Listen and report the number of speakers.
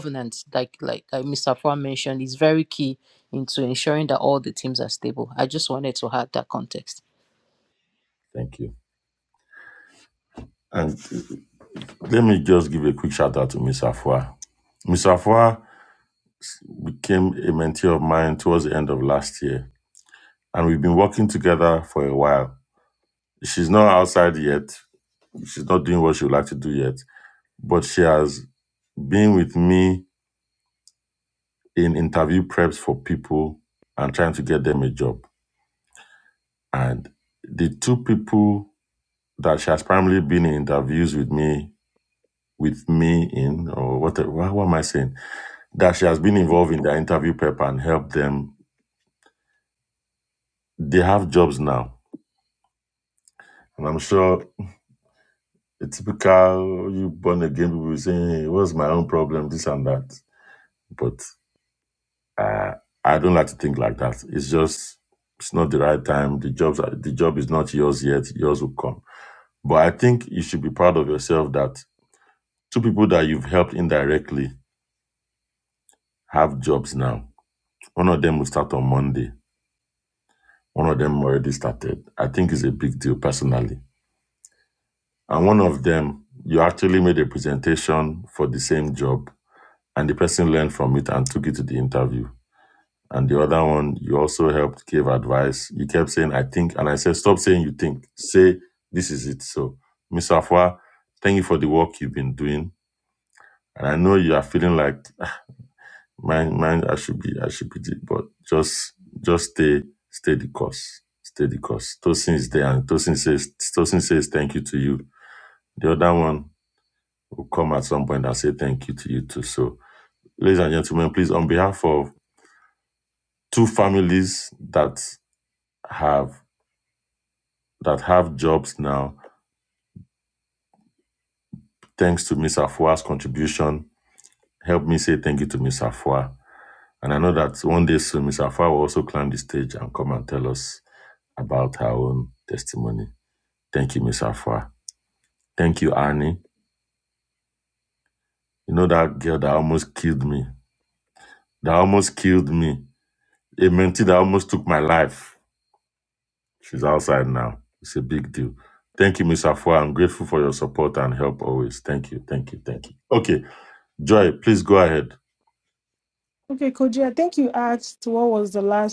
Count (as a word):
three